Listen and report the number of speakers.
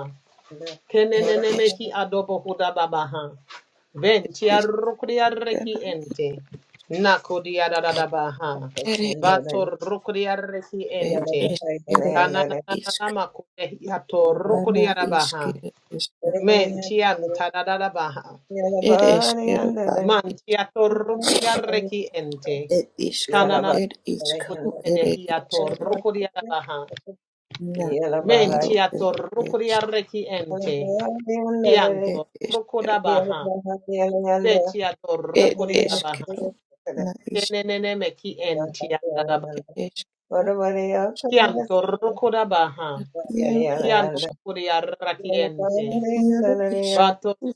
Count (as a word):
three